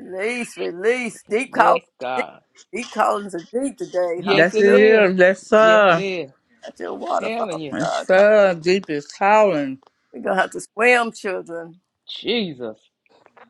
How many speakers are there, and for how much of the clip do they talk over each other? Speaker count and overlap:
3, about 18%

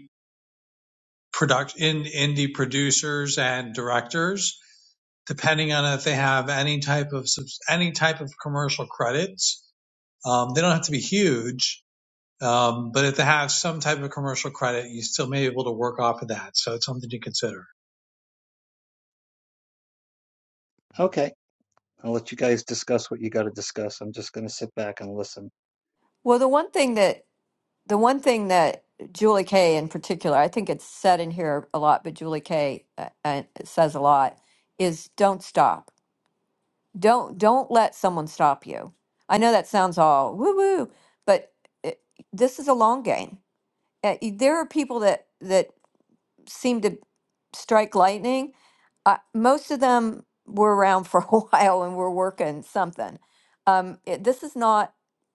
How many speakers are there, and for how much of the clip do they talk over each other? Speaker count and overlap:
3, no overlap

